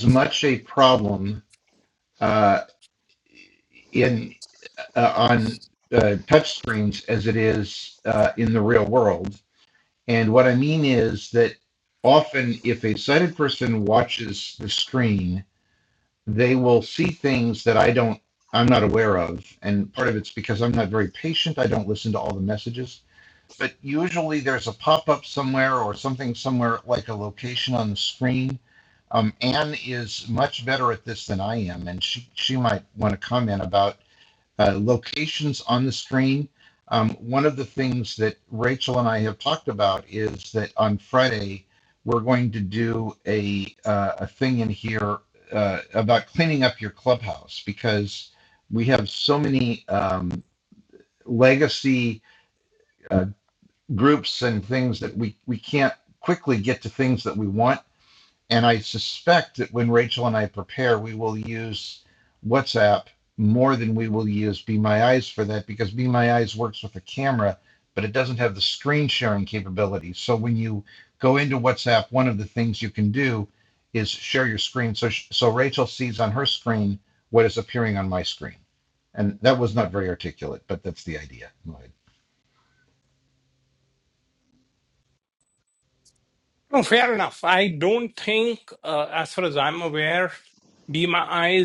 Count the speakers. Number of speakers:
2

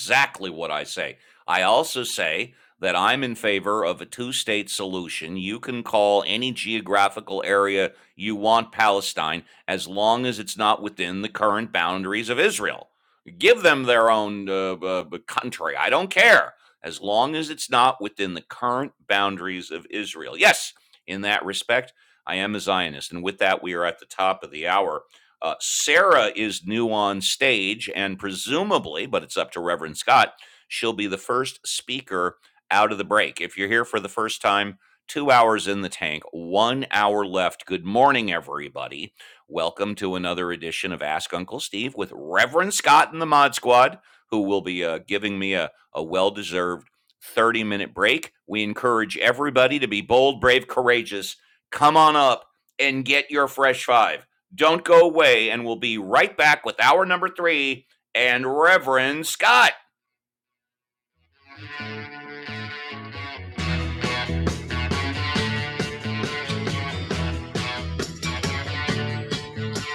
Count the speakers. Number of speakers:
1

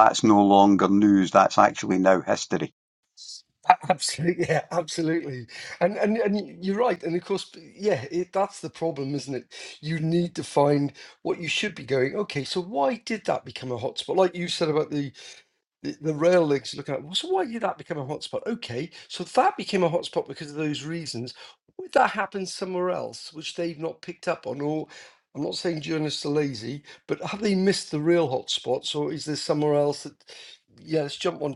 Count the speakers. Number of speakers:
2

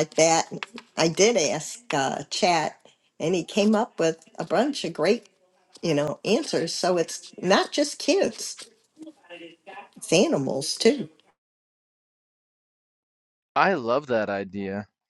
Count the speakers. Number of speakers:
2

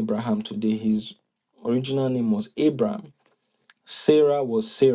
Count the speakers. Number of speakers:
1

